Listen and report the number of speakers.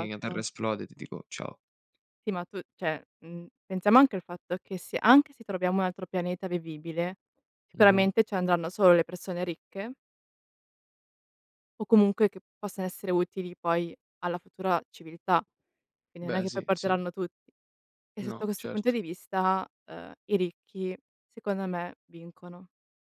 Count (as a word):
two